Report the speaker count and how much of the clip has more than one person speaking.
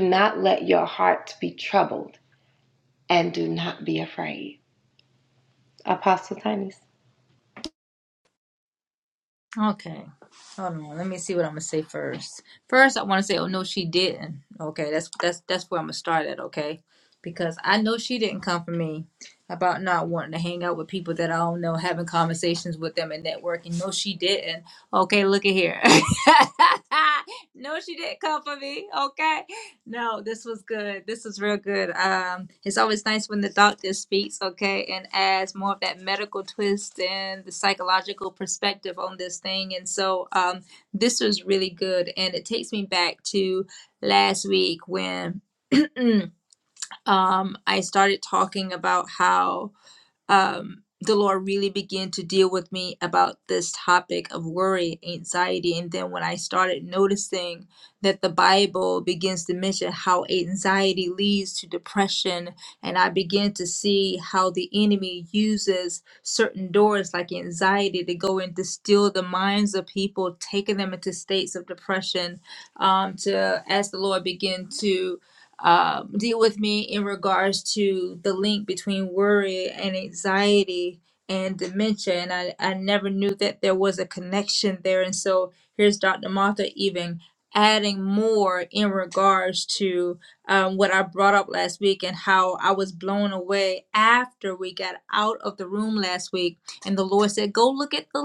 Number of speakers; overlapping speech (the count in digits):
2, no overlap